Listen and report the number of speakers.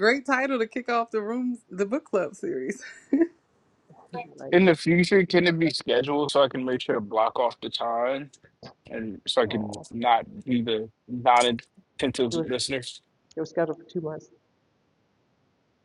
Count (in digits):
3